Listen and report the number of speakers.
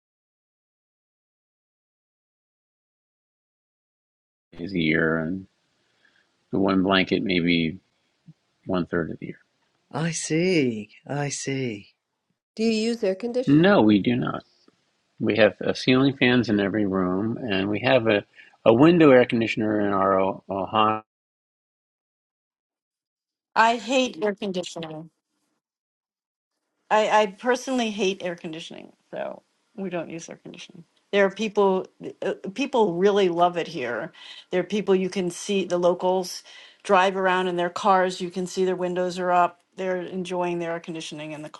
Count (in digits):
4